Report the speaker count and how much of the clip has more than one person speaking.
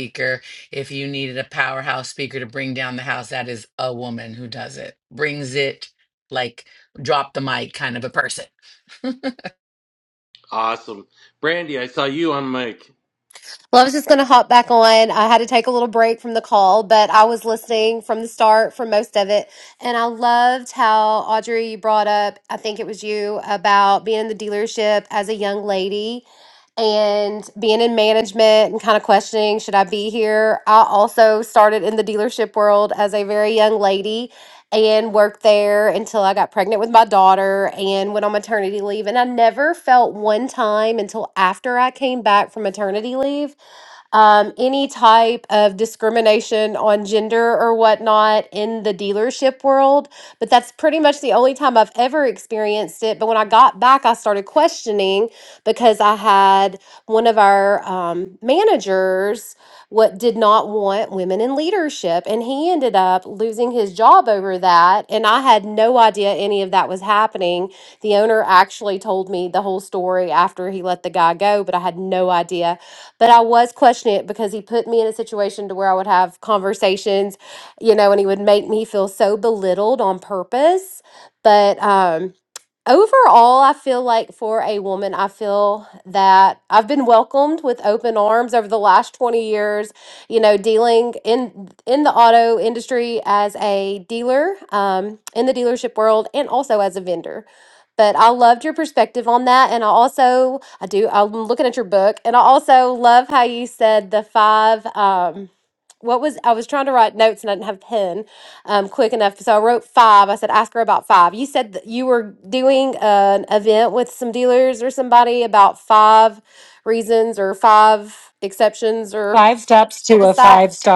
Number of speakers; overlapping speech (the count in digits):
4, about 1%